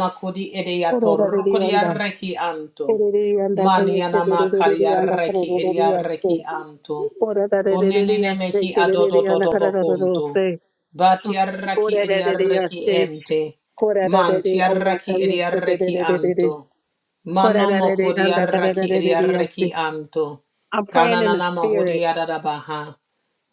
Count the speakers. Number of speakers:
two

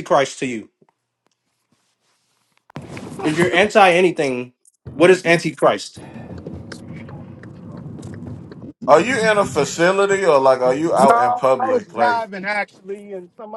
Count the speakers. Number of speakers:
three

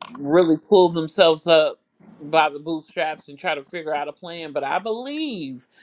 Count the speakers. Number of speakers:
one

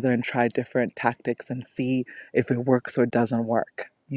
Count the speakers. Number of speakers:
one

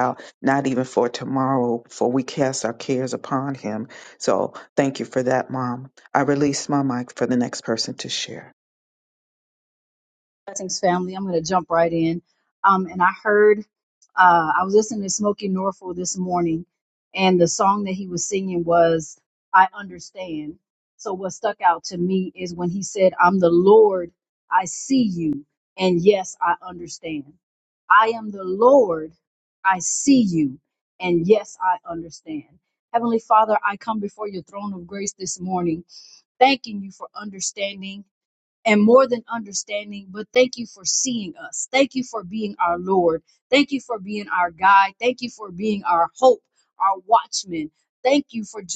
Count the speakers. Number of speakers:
two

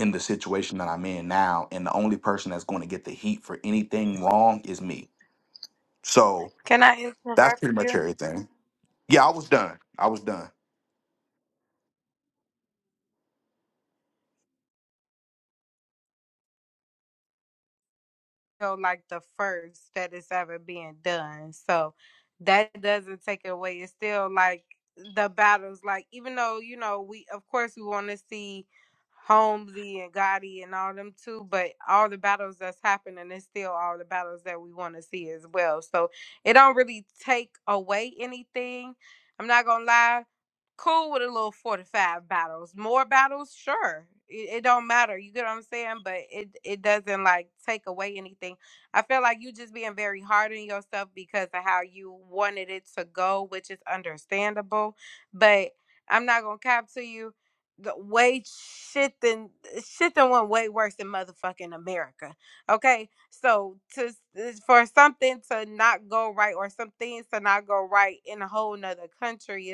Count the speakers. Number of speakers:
two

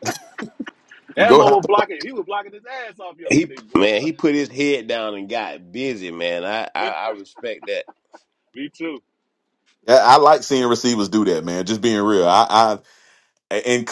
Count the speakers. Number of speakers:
three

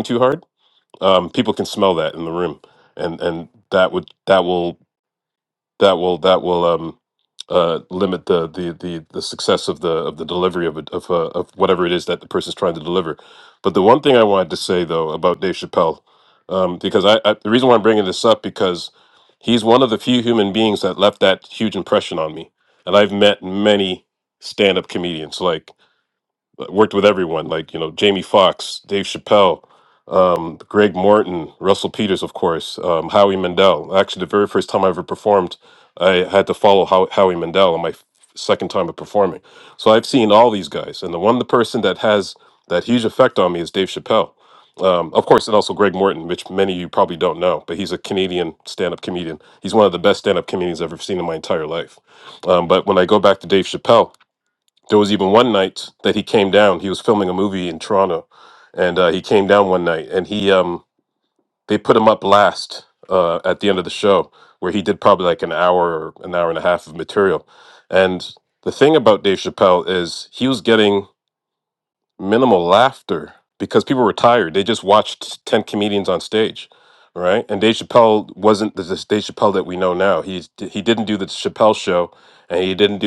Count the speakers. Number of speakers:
one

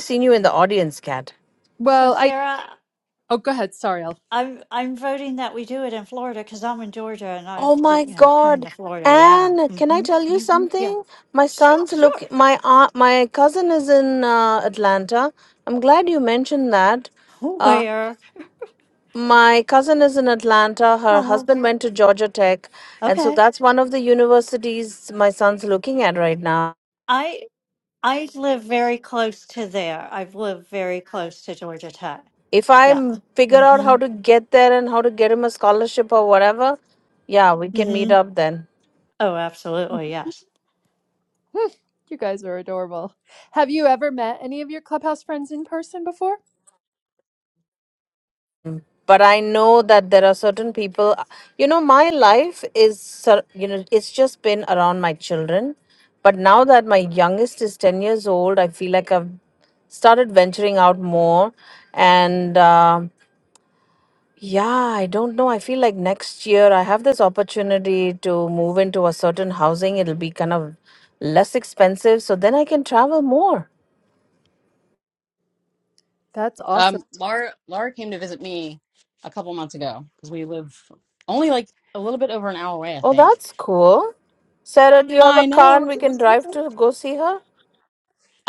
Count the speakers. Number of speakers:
four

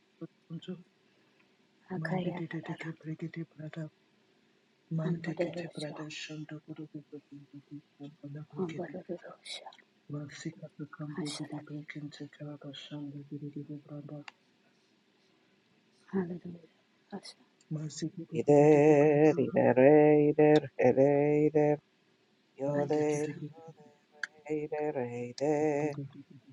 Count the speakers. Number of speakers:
three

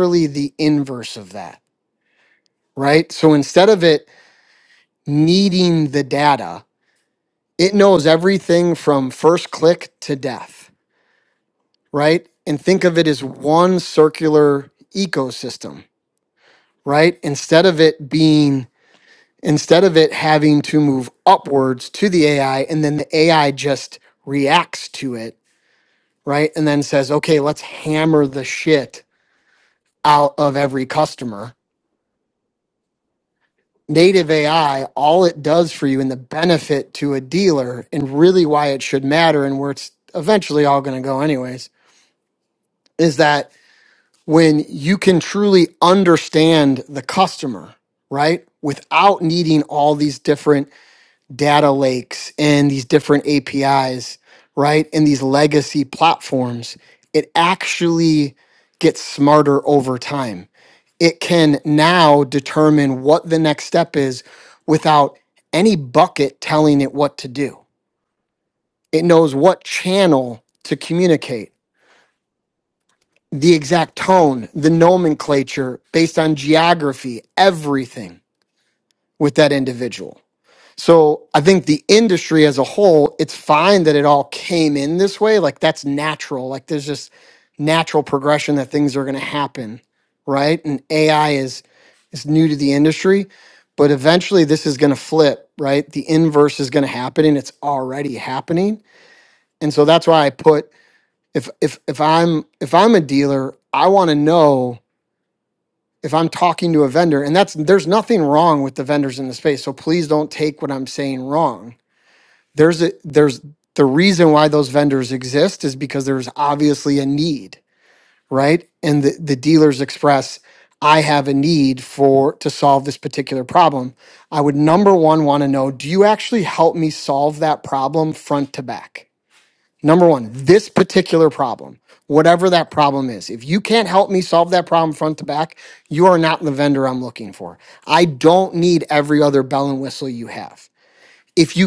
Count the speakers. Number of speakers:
one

